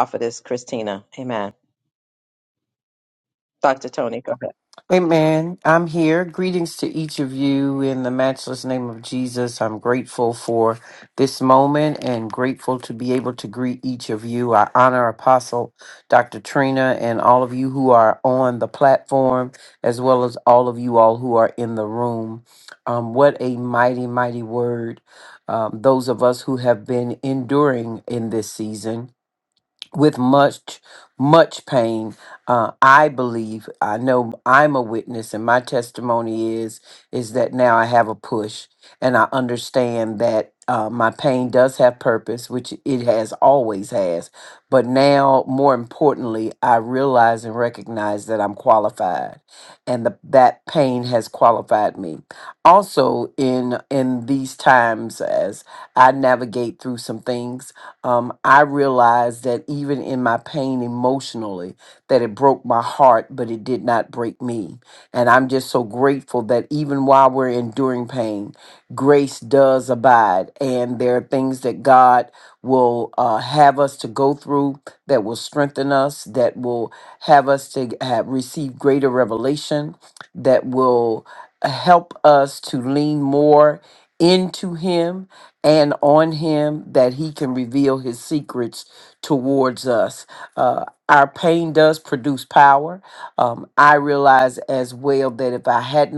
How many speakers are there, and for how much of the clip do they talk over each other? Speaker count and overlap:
two, no overlap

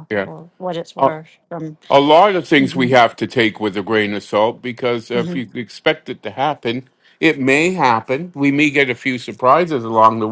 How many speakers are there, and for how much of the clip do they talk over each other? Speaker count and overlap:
two, about 8%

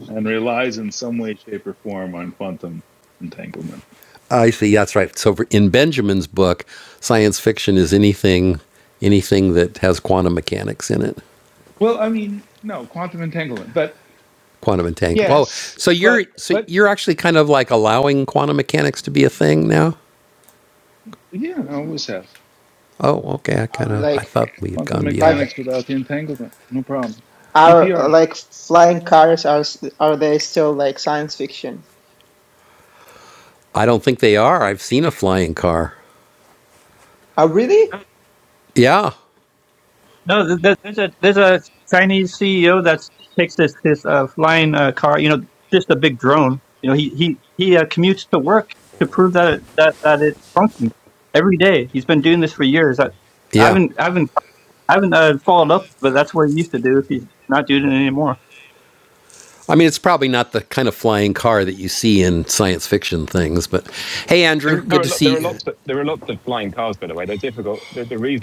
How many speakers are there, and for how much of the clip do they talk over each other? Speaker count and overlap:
five, about 6%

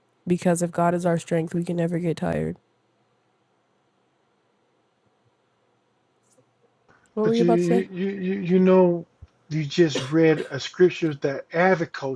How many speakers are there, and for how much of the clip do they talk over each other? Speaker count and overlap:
two, about 5%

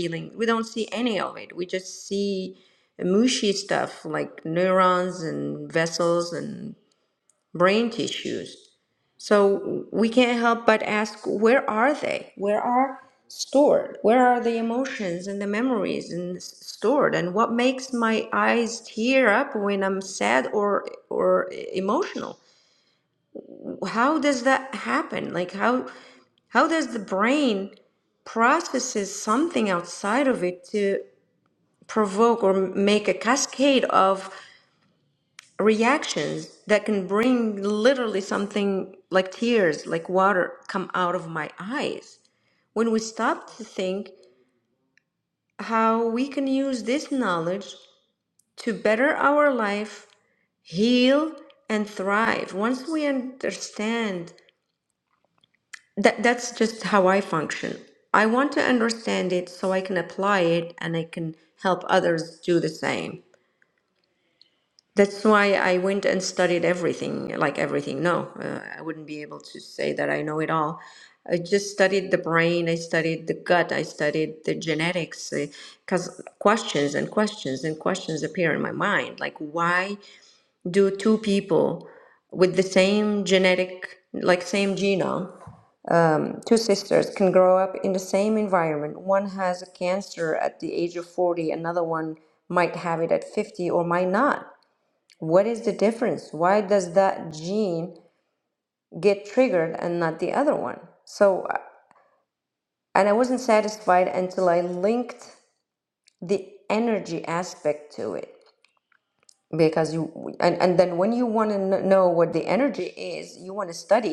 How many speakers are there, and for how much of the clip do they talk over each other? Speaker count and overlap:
one, no overlap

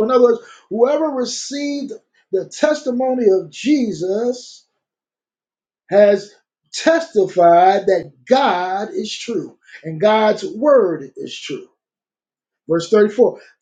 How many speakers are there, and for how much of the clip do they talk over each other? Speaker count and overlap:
one, no overlap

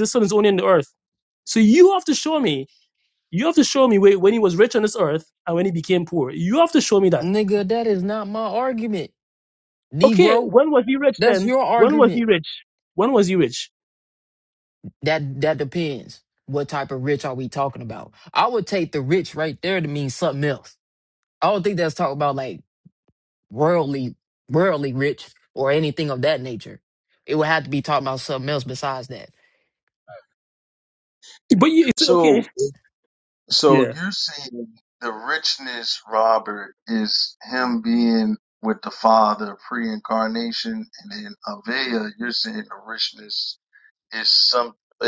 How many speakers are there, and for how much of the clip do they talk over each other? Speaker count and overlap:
three, about 5%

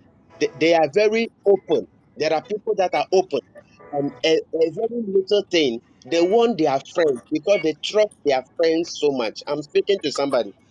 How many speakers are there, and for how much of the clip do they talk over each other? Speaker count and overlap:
one, no overlap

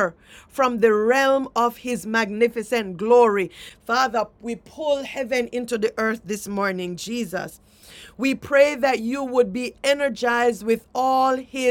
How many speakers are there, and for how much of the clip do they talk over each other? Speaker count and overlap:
one, no overlap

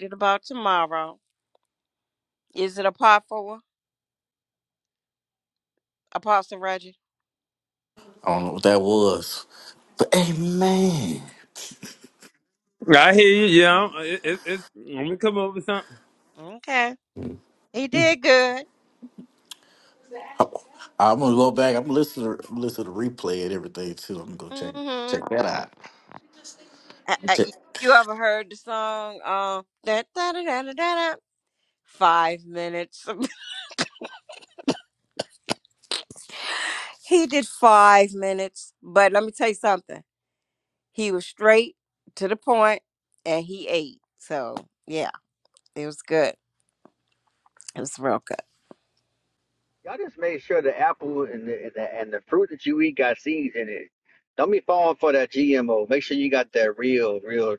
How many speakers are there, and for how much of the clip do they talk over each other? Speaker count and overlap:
four, about 1%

